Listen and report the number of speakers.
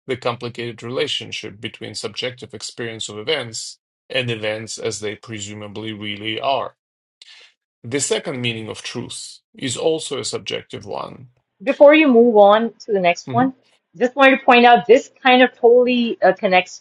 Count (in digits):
2